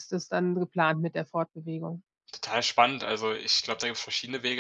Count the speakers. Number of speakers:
2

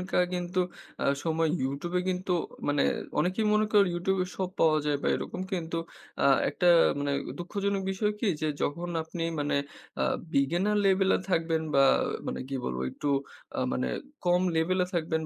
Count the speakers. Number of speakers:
1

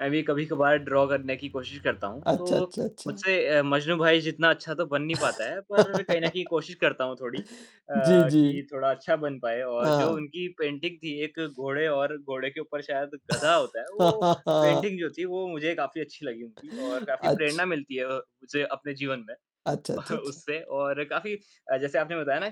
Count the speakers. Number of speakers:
2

